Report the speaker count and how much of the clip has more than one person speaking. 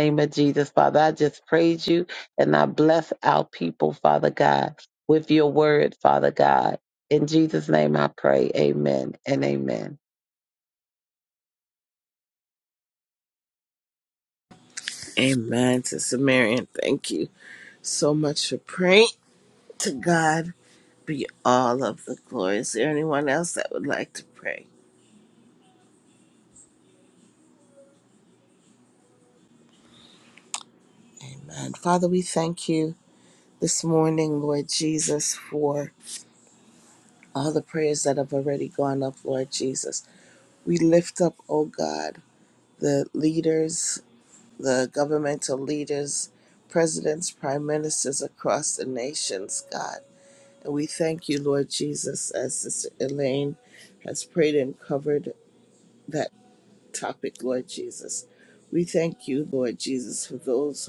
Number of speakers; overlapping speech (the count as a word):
two, no overlap